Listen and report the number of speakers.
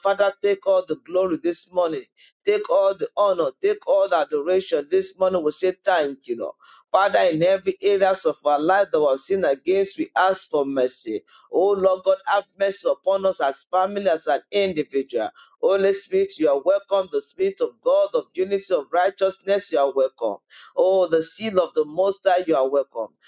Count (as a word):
one